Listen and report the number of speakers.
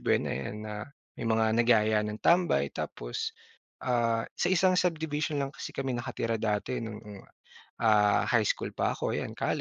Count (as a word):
one